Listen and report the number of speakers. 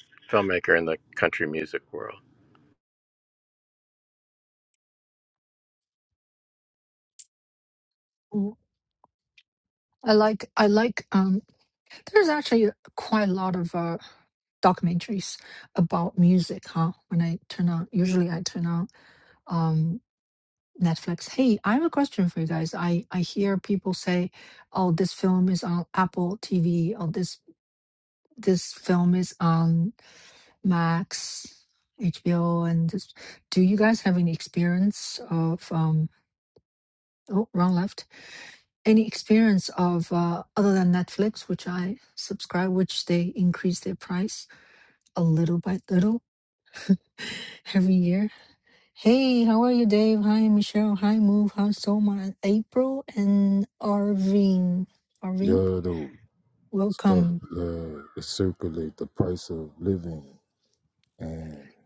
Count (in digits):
3